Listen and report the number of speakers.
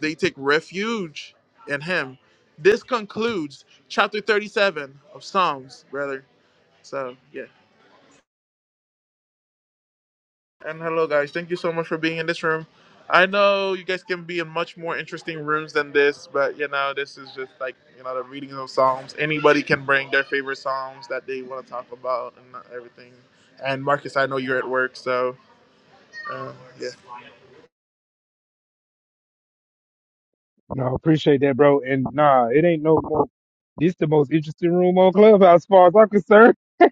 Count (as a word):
two